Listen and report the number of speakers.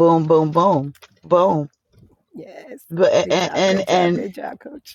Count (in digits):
2